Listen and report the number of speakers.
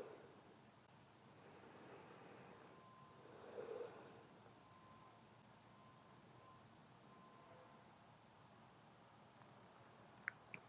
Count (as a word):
zero